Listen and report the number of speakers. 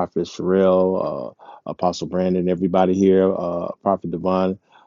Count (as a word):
one